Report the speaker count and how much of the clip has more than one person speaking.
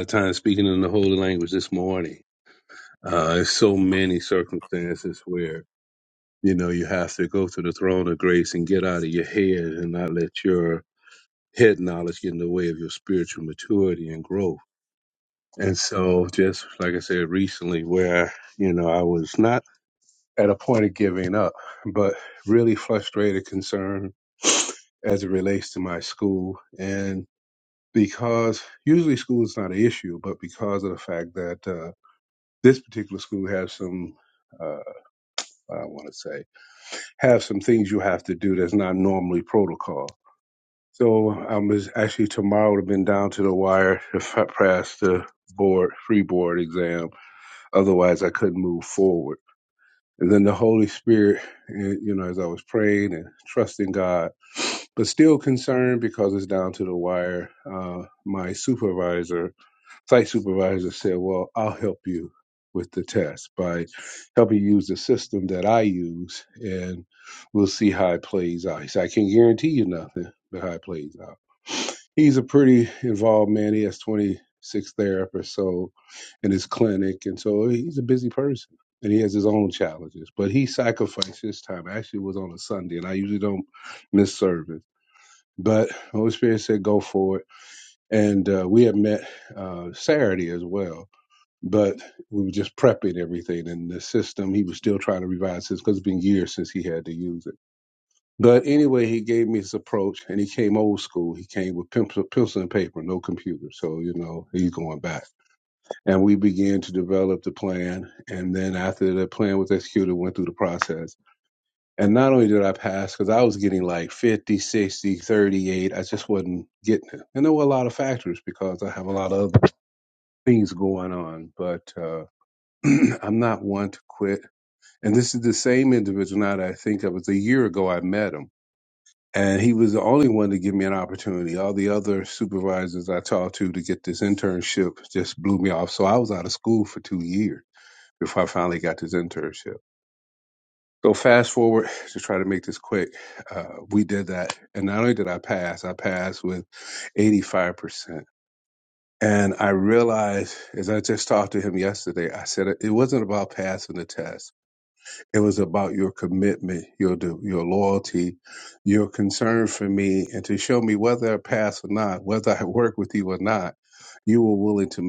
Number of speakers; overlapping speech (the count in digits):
1, no overlap